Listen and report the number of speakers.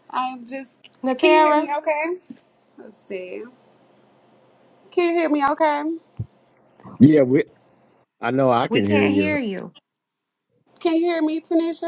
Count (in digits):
3